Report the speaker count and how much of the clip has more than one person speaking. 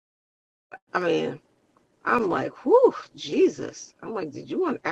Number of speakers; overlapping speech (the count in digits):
1, no overlap